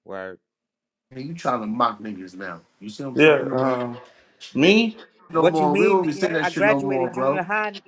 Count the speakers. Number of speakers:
3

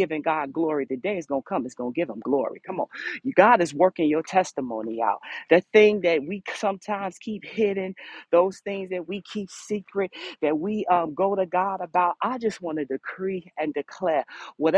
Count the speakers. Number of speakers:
1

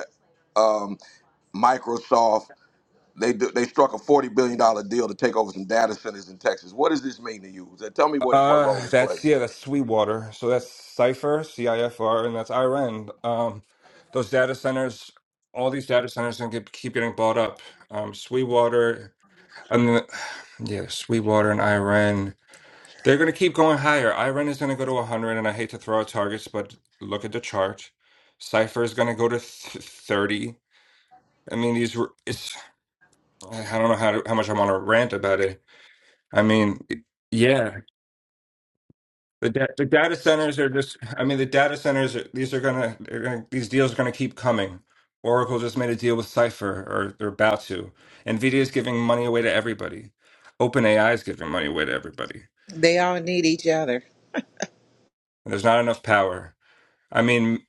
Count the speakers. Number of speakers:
3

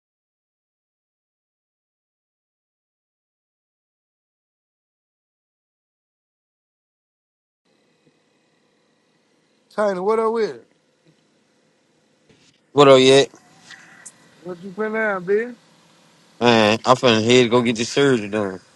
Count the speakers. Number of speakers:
2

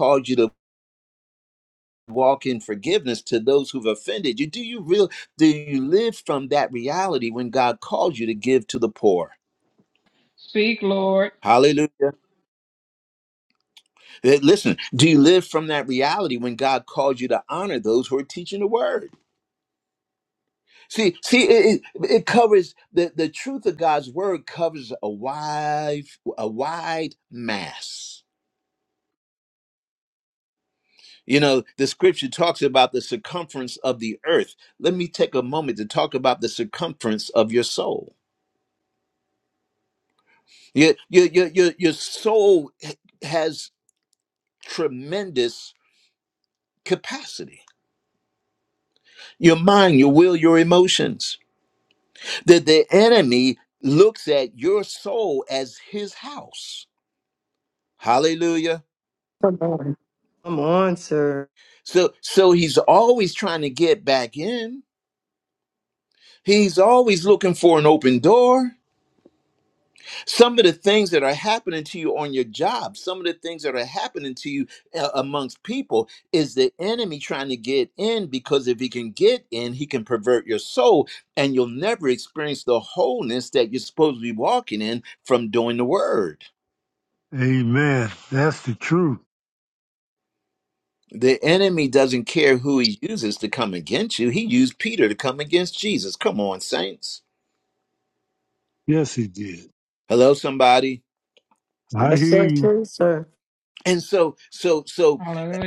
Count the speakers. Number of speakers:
4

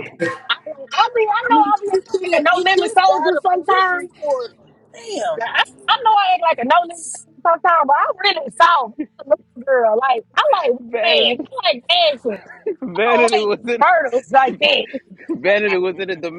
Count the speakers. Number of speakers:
3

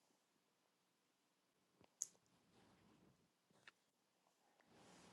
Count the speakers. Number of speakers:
0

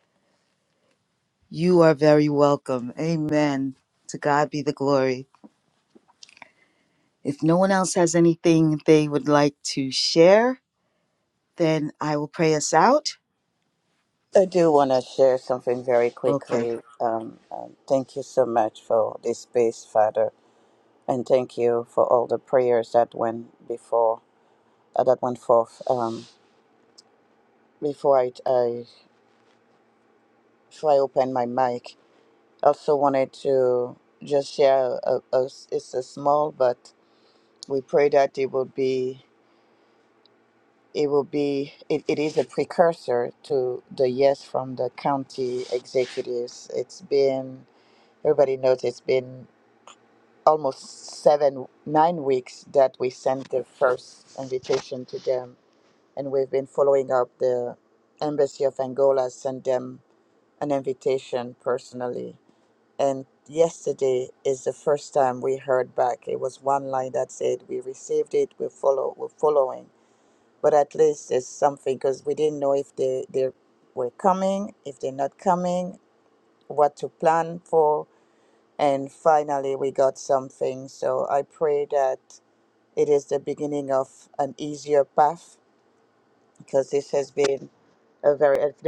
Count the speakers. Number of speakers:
2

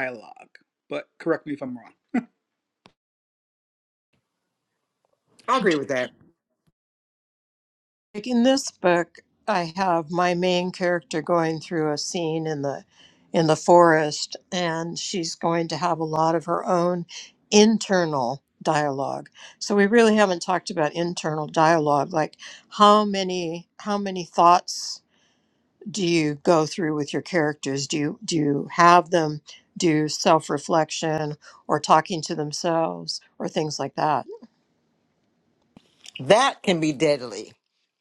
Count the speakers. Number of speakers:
3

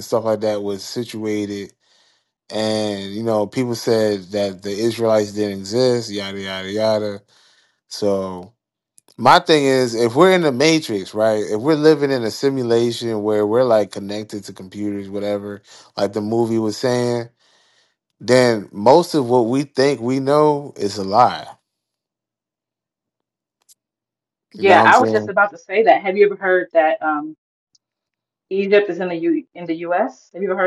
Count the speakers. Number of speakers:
2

